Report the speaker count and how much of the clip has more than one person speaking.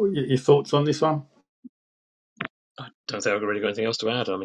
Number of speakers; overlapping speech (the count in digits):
2, no overlap